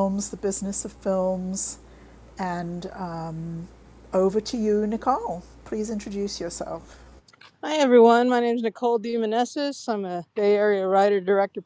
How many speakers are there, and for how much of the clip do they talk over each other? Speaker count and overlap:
2, no overlap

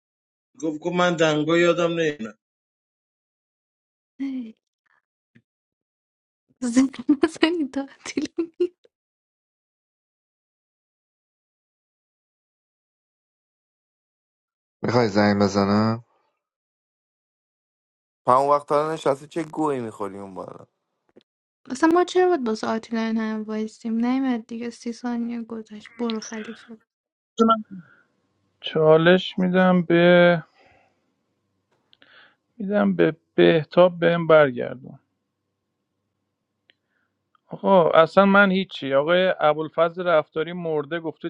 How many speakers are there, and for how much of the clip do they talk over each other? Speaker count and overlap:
5, no overlap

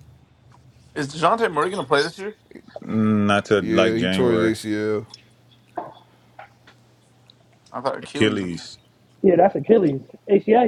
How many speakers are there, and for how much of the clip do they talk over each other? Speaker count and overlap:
4, about 13%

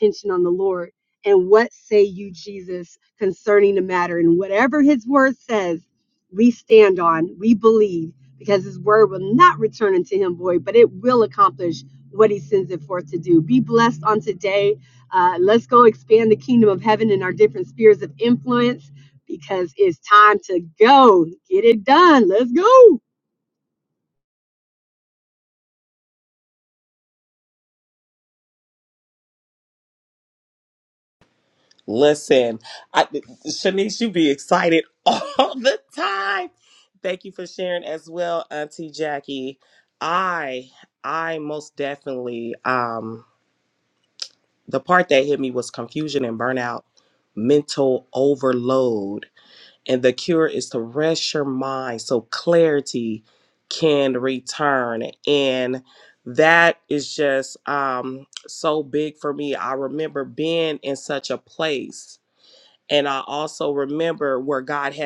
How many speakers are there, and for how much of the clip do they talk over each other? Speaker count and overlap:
2, no overlap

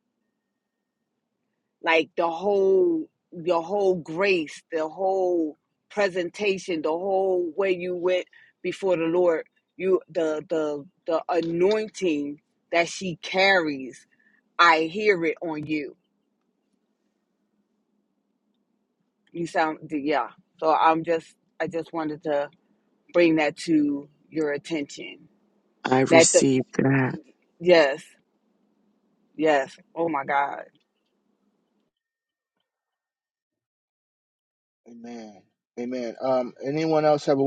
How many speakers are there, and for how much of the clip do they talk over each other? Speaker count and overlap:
3, about 1%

